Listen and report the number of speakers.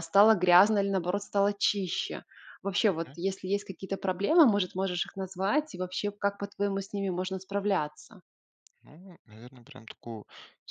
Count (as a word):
two